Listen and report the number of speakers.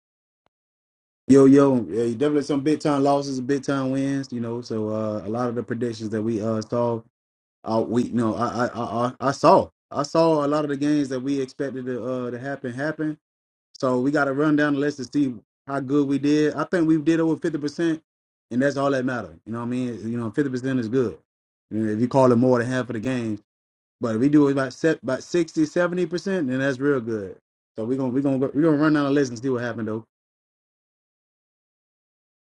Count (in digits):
1